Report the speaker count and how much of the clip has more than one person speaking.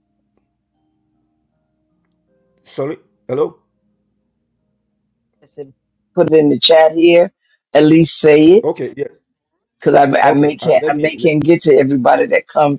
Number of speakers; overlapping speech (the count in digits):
2, about 9%